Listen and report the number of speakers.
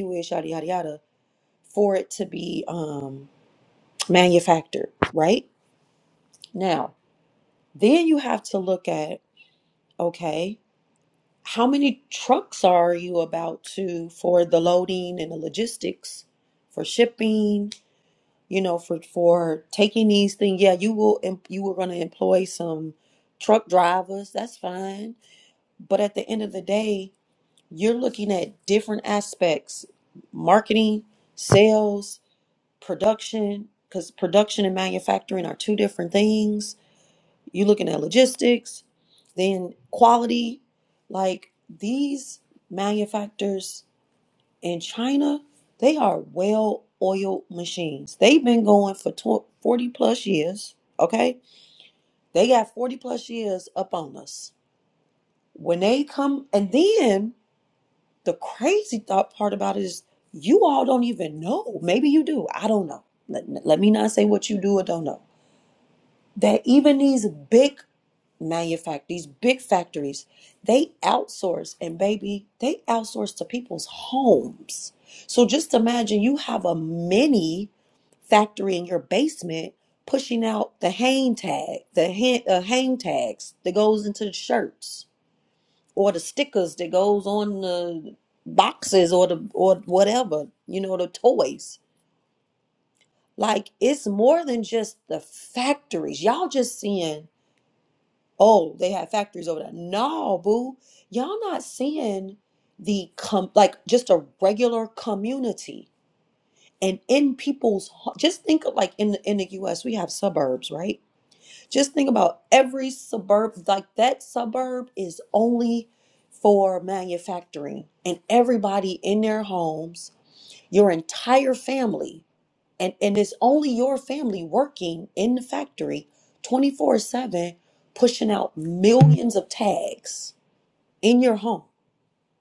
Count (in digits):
1